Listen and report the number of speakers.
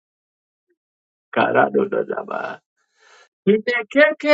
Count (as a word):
one